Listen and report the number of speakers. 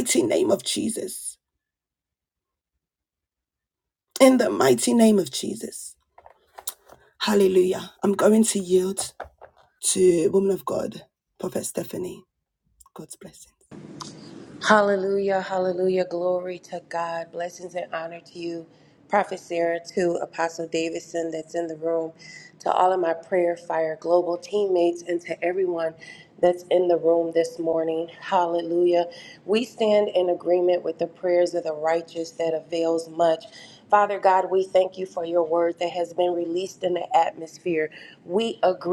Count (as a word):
two